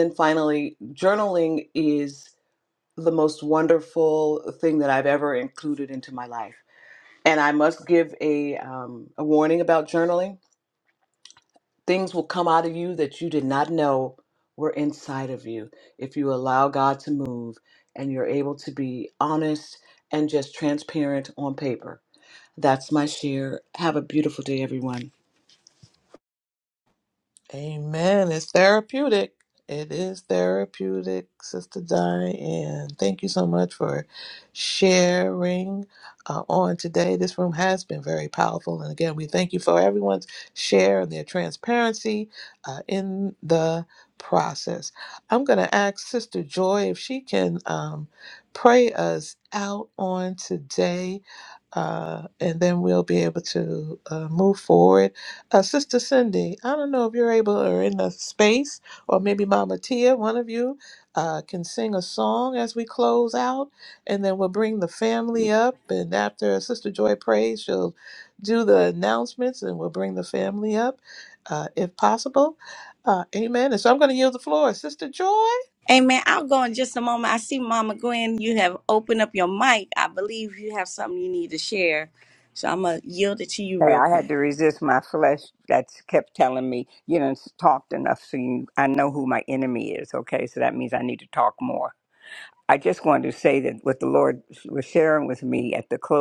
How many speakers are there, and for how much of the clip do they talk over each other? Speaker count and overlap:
4, under 1%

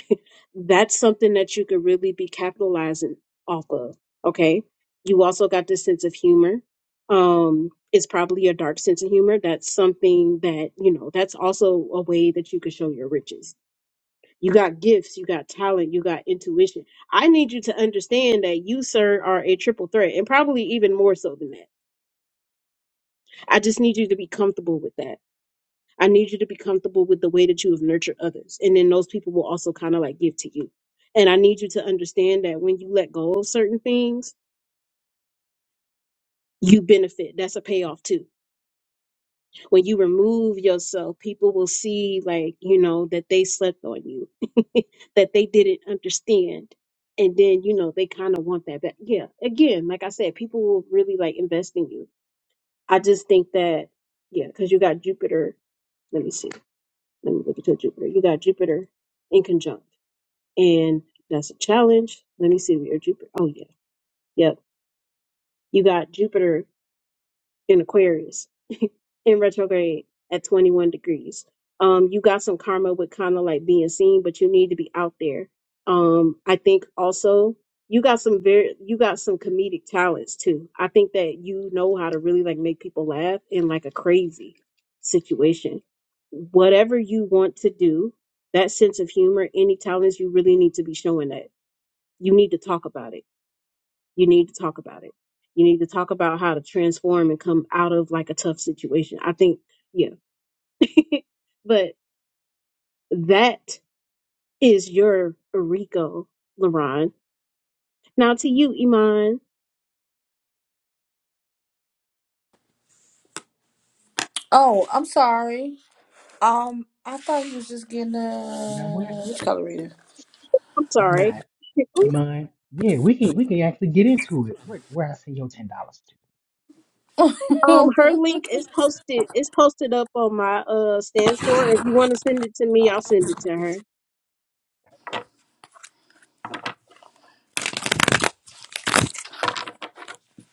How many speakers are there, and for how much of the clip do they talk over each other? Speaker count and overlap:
3, about 1%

